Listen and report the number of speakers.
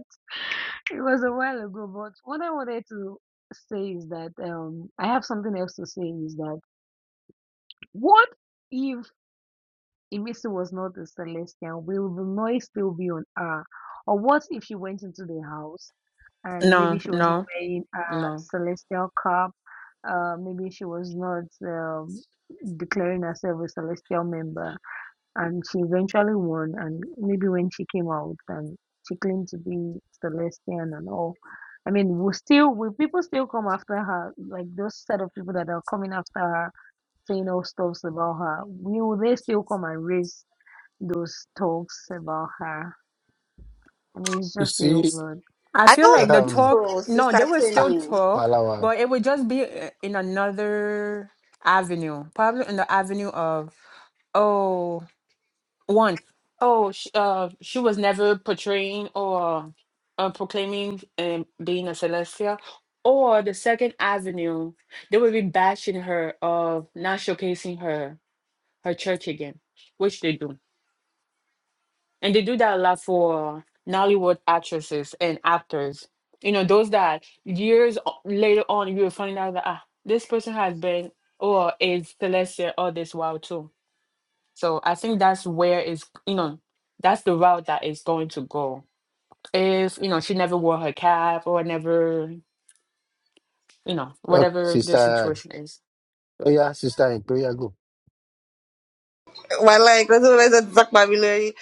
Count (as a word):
four